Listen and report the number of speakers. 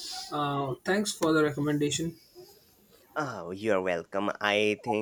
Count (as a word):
two